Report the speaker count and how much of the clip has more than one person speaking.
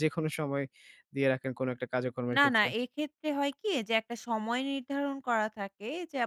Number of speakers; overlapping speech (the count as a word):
two, about 6%